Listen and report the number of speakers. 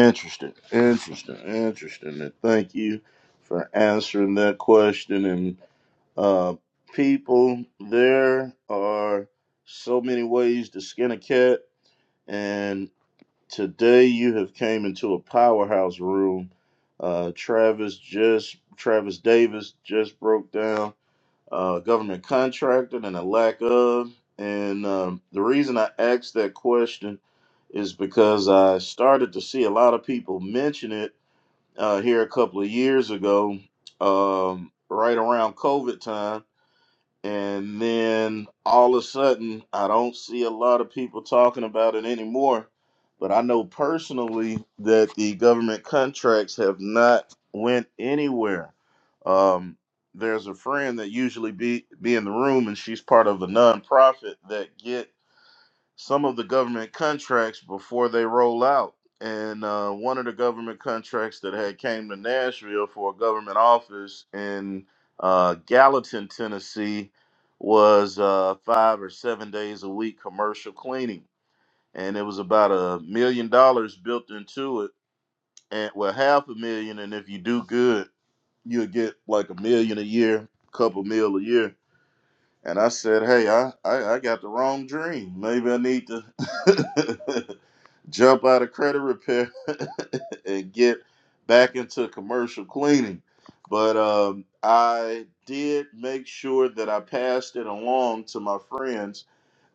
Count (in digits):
1